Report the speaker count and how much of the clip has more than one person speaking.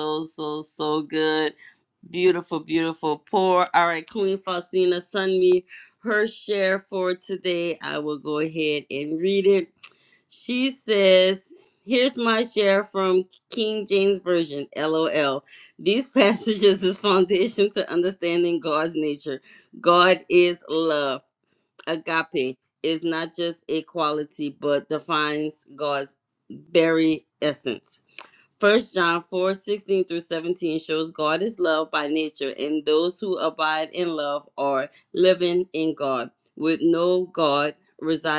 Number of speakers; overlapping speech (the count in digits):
1, no overlap